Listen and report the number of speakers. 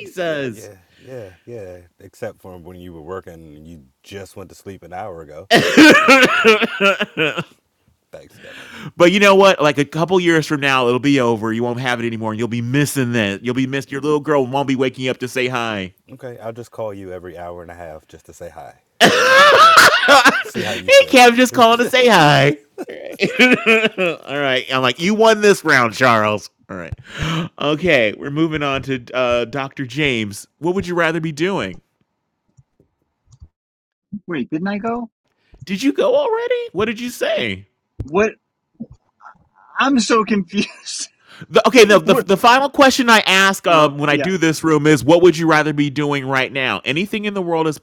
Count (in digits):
3